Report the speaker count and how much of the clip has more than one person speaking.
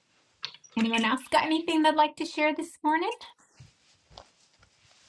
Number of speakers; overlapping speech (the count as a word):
one, no overlap